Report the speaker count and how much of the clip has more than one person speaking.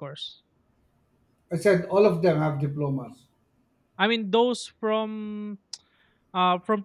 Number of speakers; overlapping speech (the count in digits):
2, no overlap